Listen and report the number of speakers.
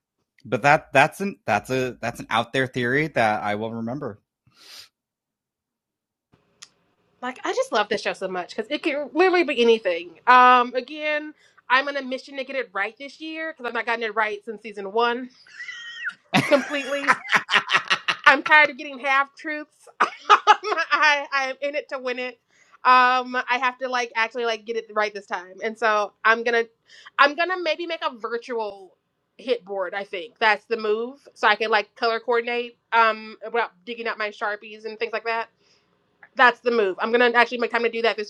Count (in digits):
2